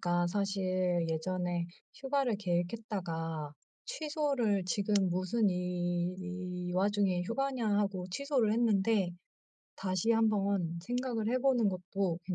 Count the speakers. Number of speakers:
1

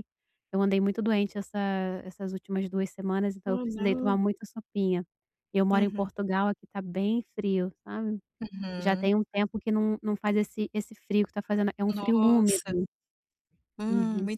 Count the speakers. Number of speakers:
2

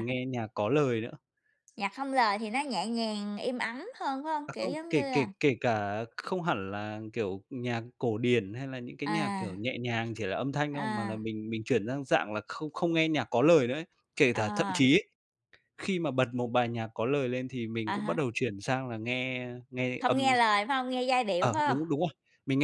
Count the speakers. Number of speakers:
2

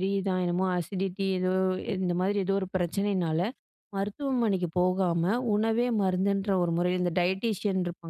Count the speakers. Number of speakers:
1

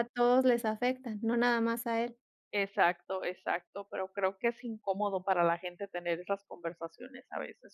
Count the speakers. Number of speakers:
2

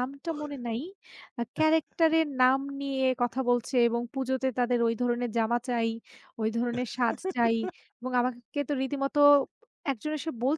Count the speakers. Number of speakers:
1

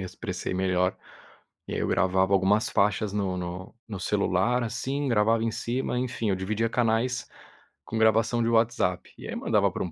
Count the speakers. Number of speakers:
1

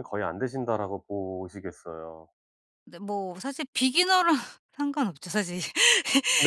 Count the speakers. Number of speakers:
2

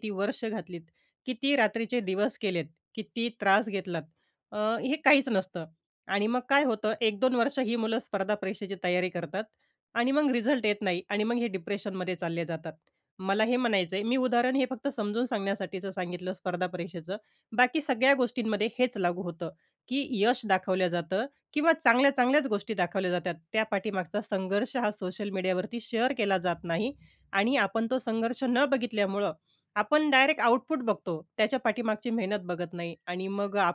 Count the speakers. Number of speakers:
1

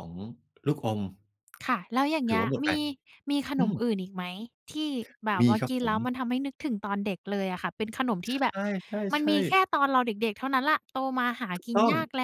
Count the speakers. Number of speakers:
2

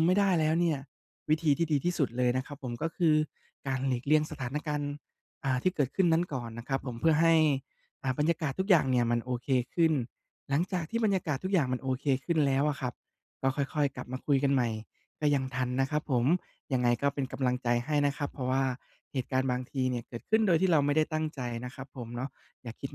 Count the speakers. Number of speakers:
1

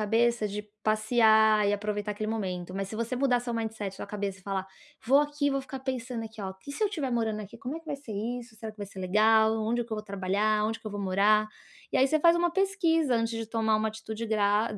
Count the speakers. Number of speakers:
1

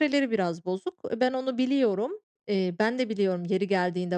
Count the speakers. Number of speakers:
1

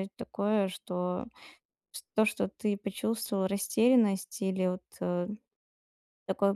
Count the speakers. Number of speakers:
1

